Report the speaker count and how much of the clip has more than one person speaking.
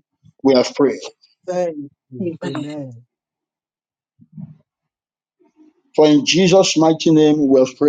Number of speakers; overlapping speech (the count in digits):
2, no overlap